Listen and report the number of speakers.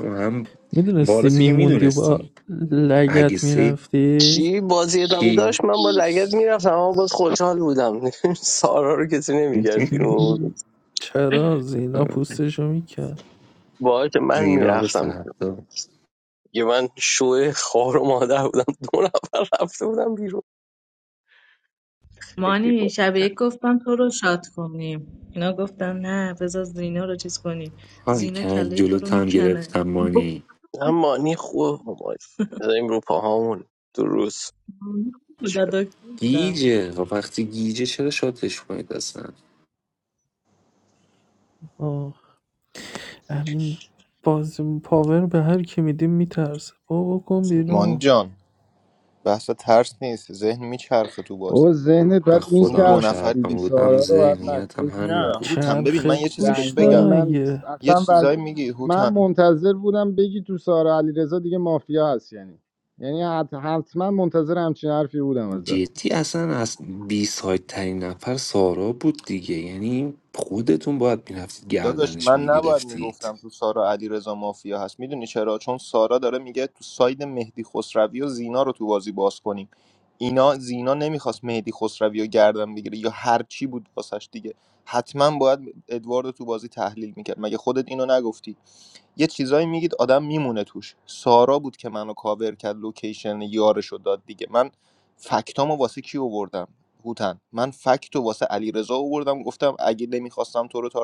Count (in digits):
6